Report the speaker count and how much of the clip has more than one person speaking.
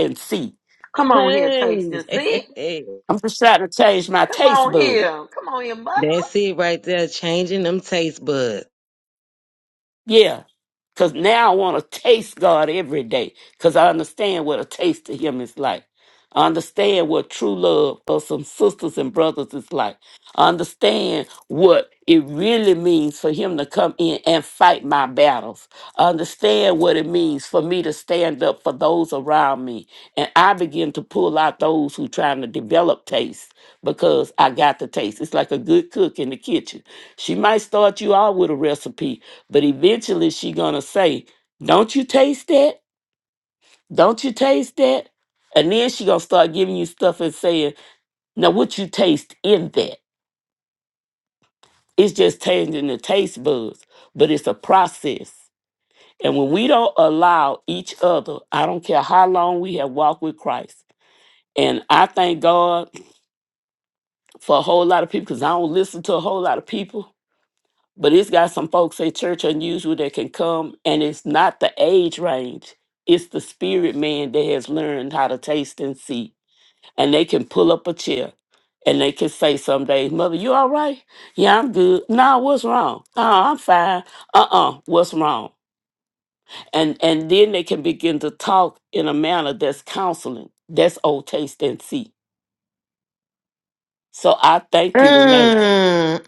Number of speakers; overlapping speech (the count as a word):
three, about 3%